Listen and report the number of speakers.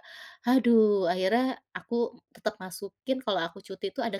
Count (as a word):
one